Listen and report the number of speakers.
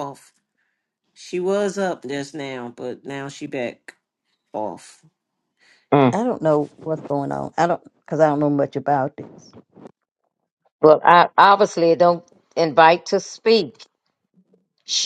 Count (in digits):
3